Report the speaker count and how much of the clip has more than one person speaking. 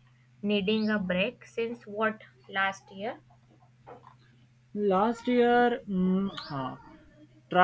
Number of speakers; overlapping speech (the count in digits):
2, no overlap